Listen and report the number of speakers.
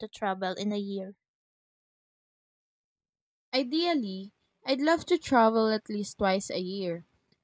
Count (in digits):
2